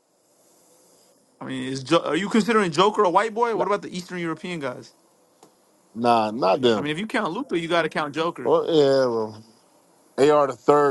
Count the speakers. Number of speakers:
two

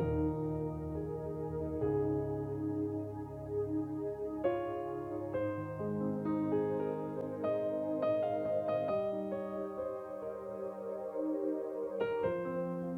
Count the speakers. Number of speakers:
zero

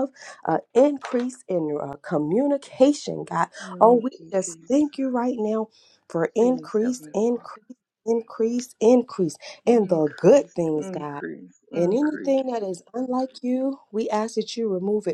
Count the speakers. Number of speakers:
two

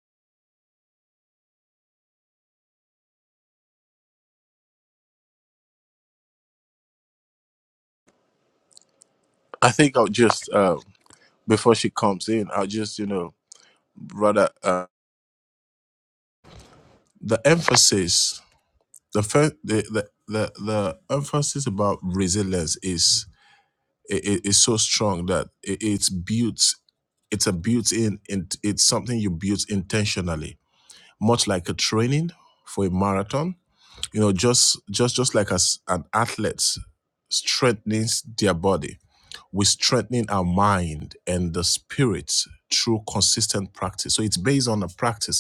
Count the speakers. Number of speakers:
one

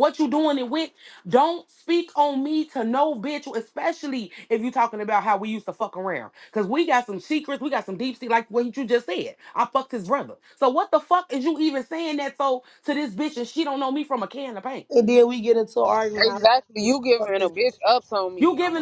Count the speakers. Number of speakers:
three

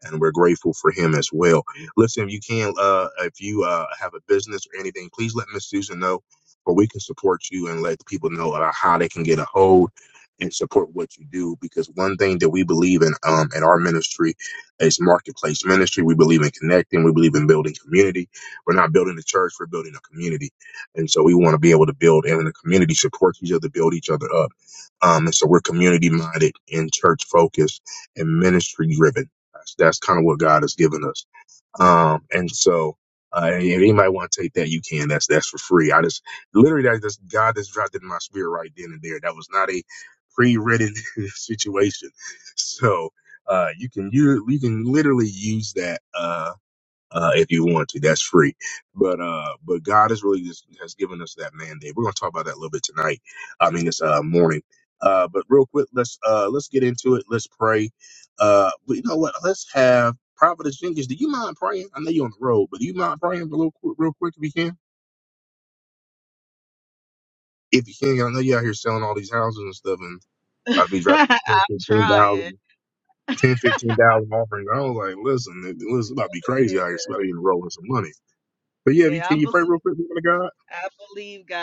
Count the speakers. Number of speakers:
two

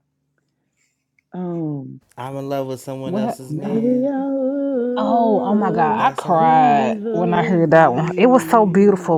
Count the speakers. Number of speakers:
three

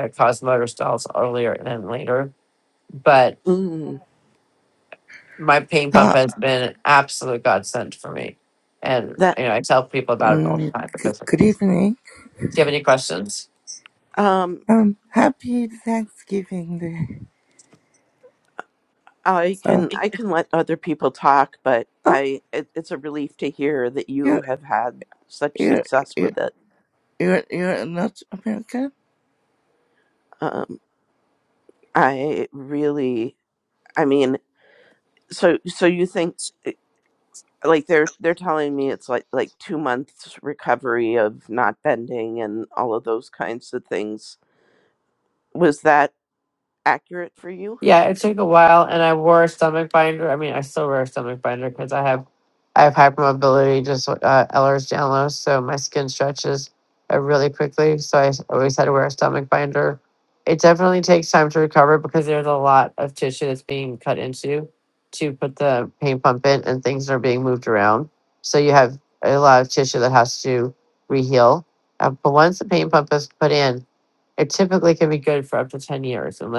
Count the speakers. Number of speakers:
three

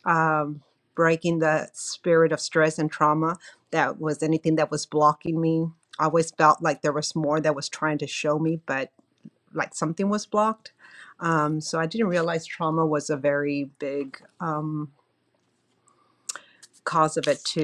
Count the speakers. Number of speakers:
one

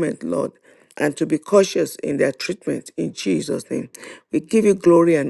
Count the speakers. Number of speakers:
one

